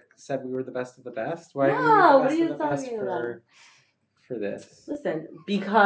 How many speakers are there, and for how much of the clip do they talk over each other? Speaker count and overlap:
2, about 28%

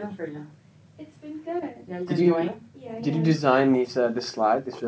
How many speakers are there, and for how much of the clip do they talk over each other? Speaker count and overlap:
3, about 14%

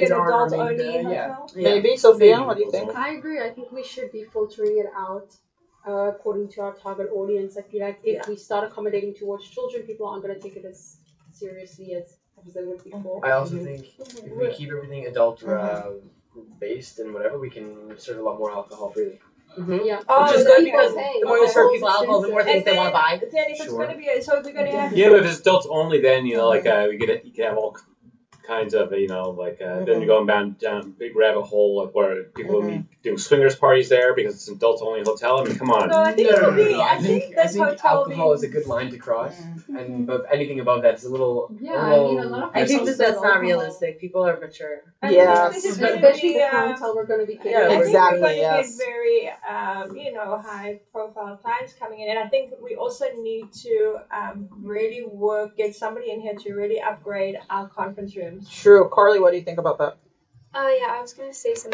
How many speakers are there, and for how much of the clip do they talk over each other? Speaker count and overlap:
7, about 29%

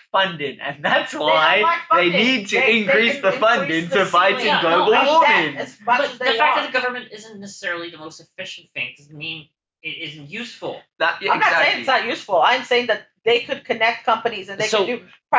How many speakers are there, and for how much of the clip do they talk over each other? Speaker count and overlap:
3, about 40%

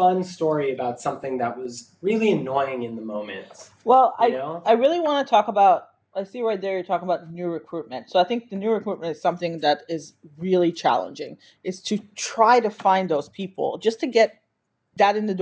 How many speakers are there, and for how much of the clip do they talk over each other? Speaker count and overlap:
2, about 1%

